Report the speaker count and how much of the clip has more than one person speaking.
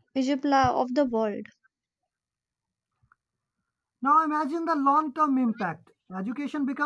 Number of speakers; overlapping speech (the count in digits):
2, no overlap